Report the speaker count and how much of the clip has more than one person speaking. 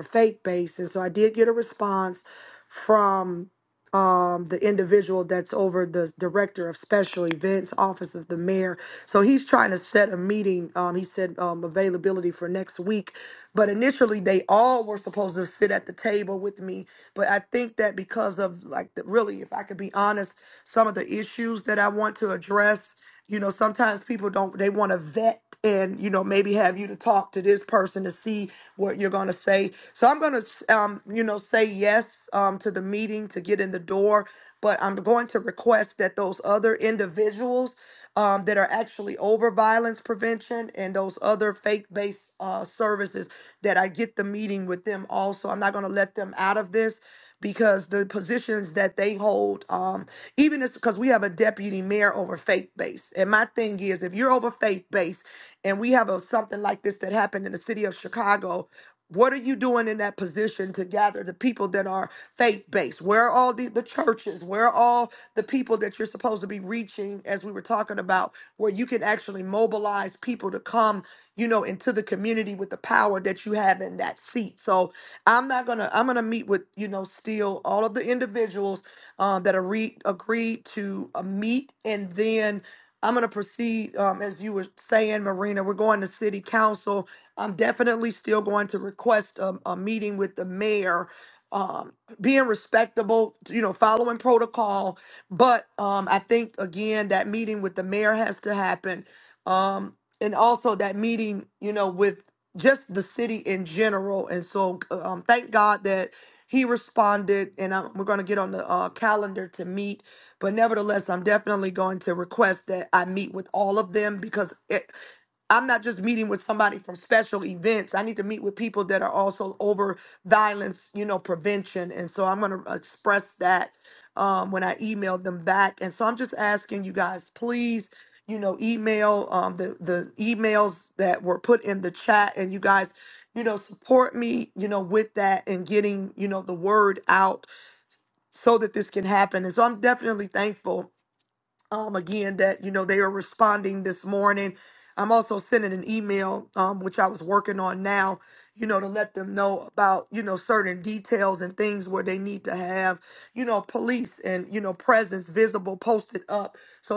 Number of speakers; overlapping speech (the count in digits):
1, no overlap